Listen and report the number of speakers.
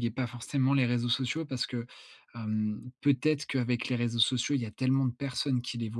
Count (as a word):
one